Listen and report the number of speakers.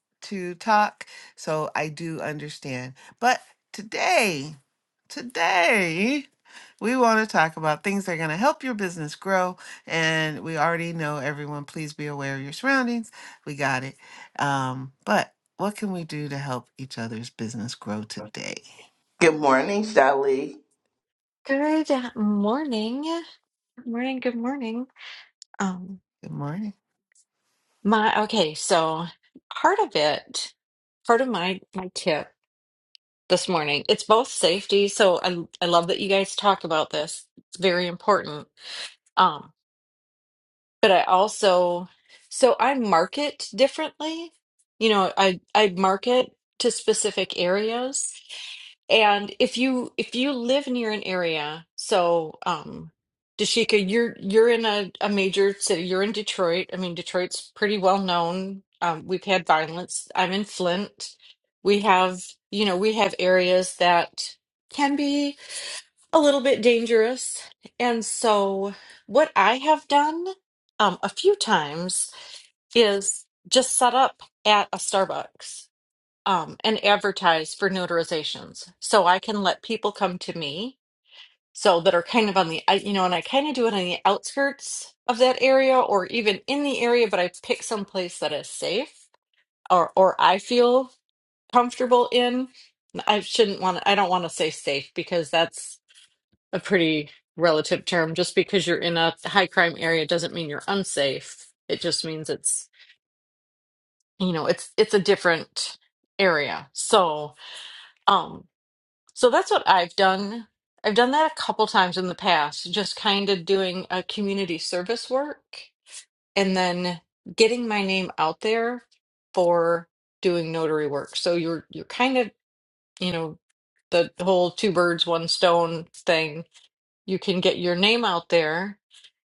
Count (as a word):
three